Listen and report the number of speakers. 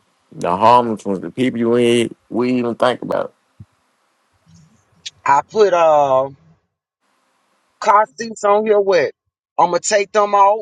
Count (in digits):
2